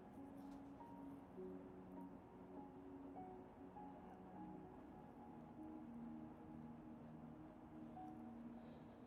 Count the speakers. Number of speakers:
zero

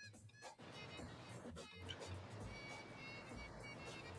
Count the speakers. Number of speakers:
zero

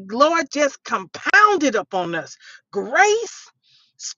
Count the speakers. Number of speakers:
one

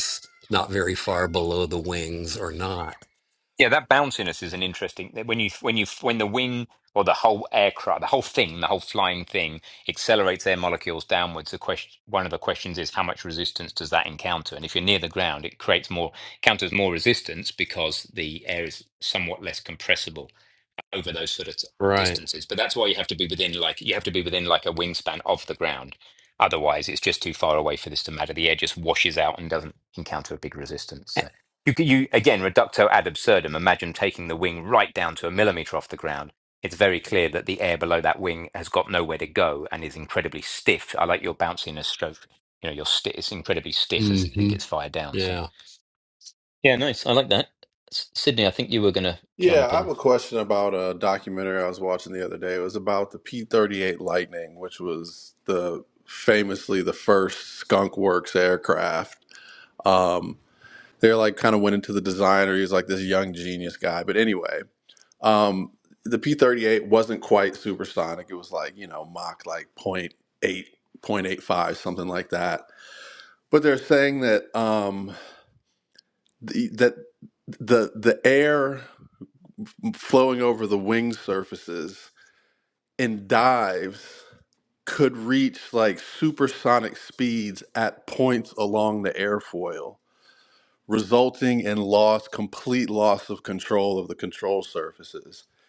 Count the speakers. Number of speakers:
three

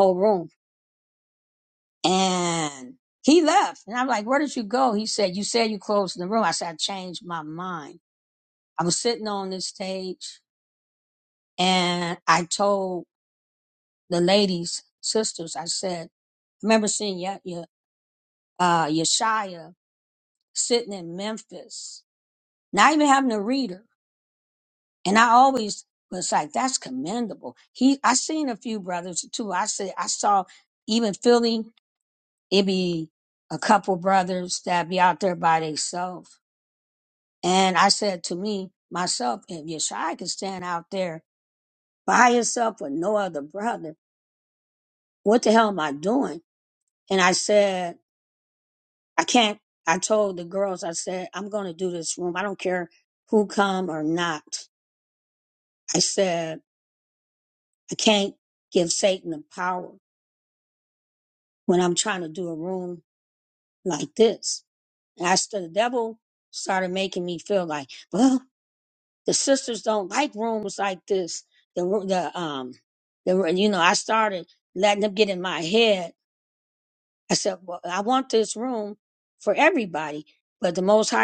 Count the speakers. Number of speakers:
one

